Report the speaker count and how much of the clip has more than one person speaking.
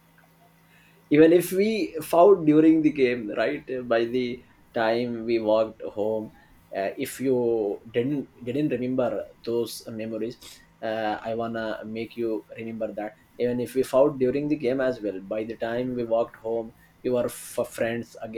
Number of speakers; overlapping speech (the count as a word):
one, no overlap